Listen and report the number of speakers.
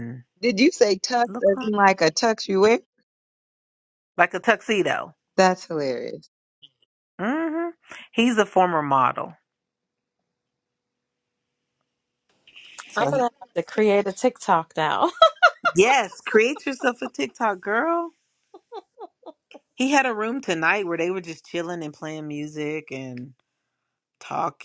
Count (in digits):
3